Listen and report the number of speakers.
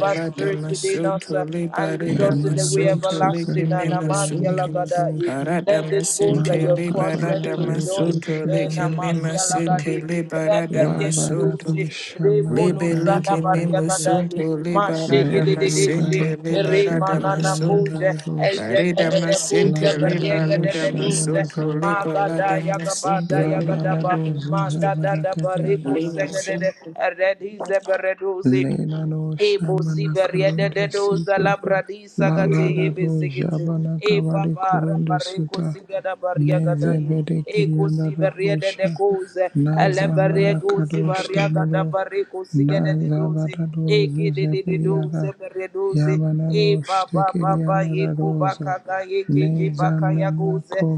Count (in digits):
3